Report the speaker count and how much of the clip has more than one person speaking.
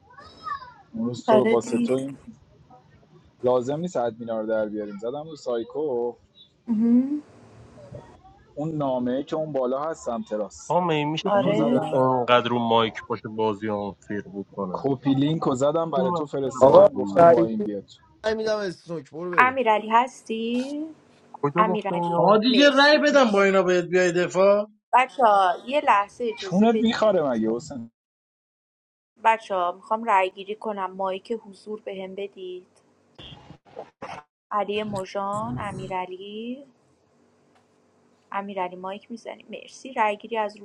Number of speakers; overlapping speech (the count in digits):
5, about 15%